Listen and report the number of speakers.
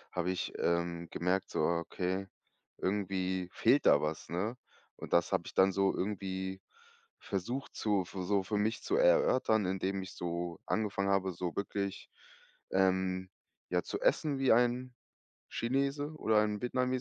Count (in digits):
1